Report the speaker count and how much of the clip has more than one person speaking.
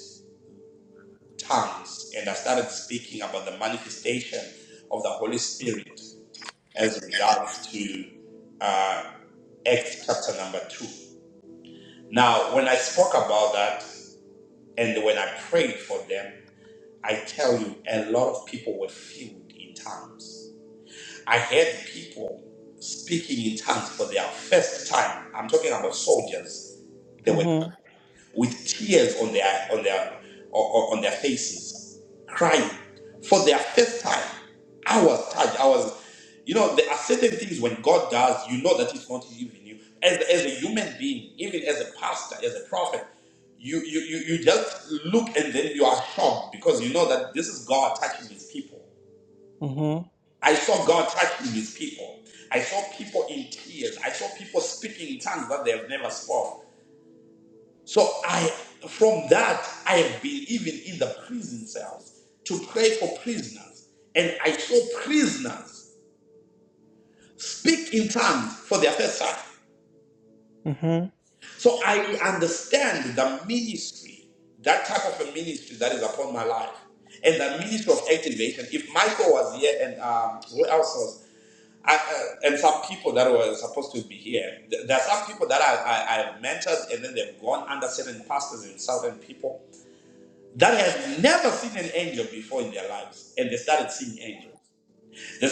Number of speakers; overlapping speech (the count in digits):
2, under 1%